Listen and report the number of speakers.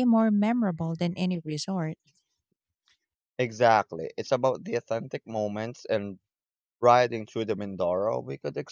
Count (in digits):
2